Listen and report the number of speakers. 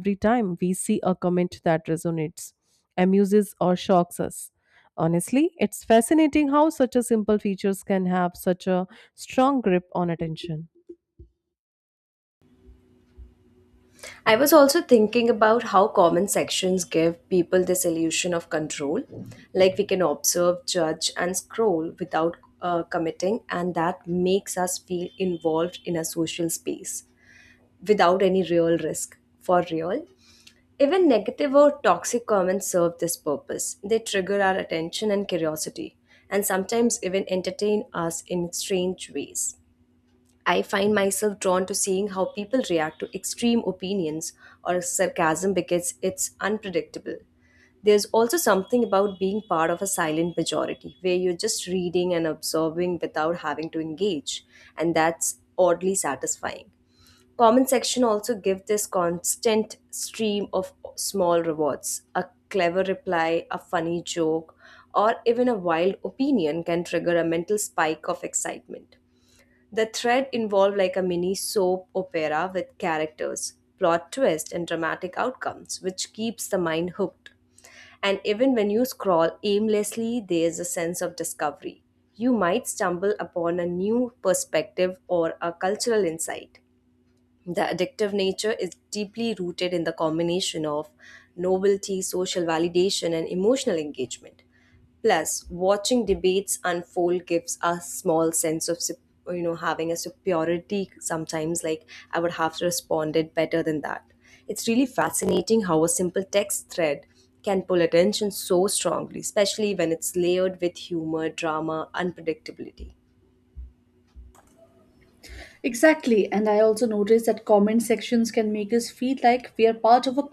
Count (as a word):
three